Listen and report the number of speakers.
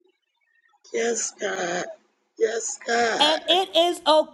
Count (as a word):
two